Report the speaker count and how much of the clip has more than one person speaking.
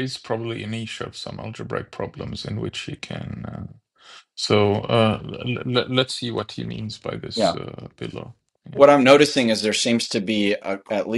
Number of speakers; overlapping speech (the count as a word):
two, about 1%